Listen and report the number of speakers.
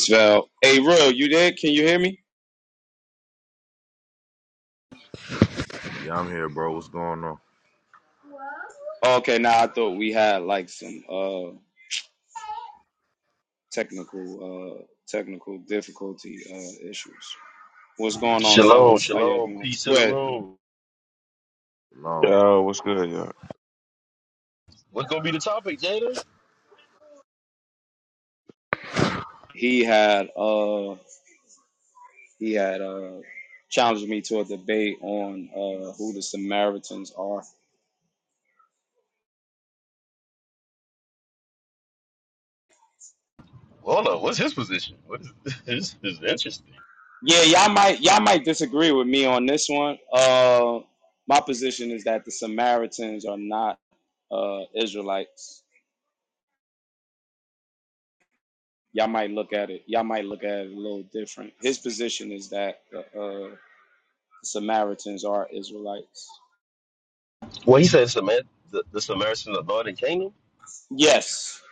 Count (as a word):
four